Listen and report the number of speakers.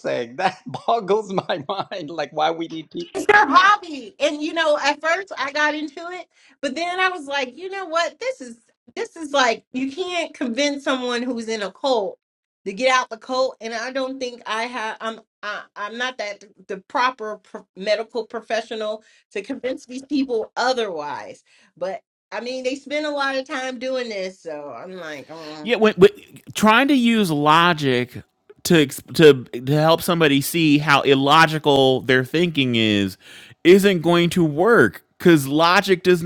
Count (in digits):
3